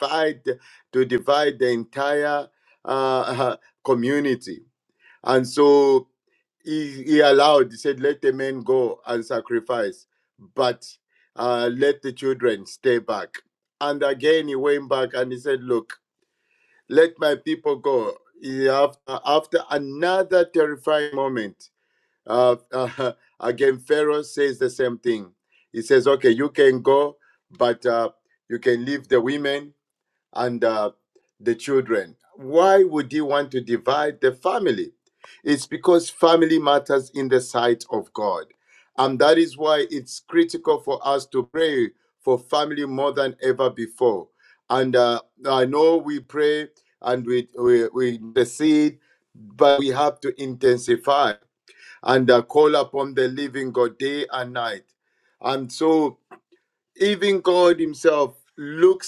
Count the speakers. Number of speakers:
1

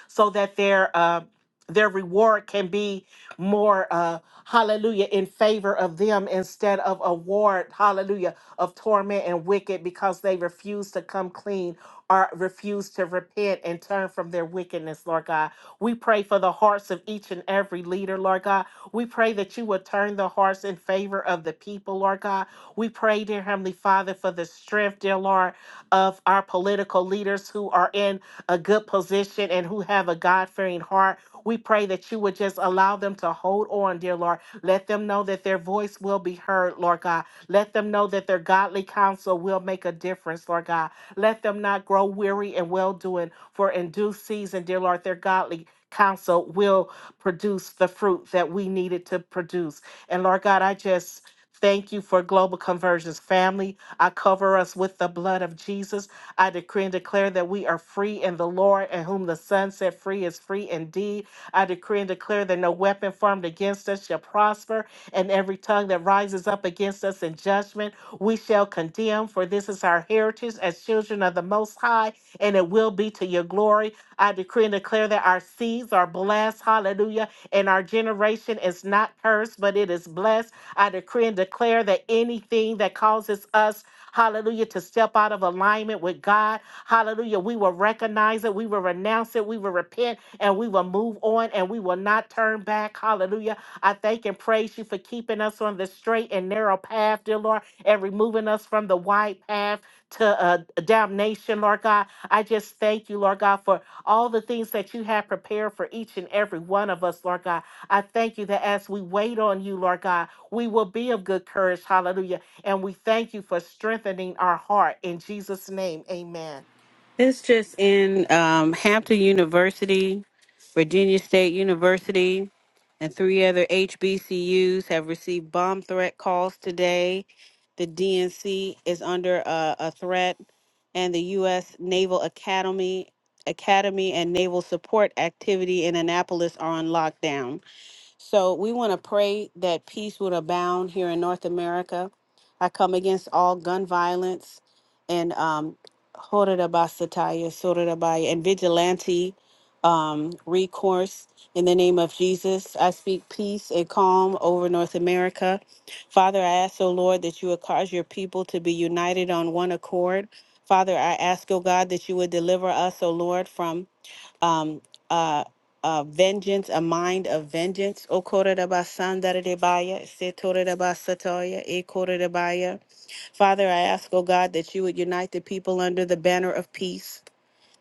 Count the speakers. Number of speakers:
2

